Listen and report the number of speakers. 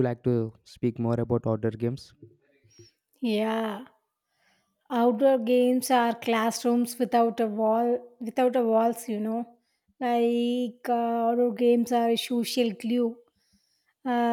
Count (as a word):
two